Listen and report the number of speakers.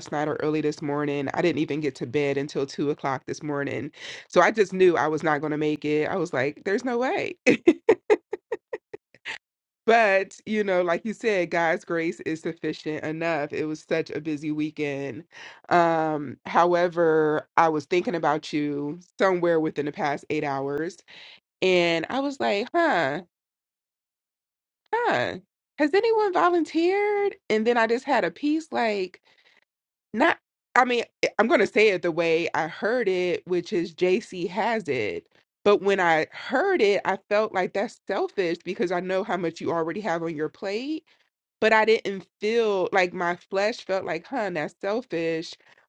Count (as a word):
one